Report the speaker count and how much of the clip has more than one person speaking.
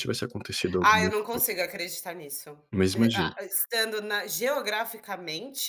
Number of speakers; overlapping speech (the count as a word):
two, about 18%